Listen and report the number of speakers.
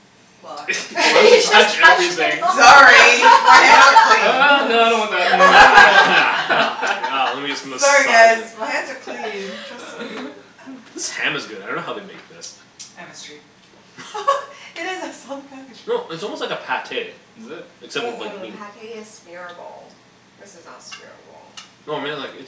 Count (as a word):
four